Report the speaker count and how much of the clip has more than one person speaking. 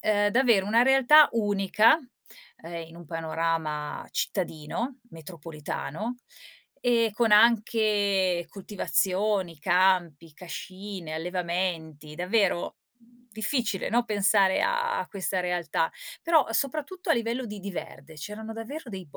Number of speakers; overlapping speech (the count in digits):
1, no overlap